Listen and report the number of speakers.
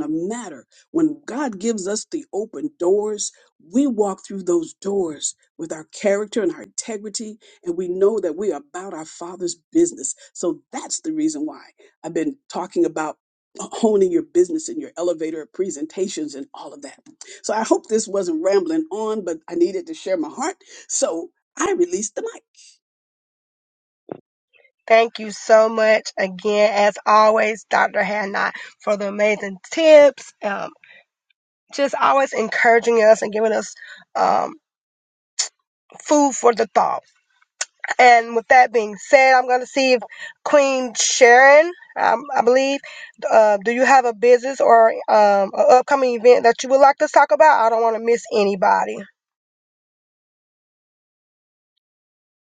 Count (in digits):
2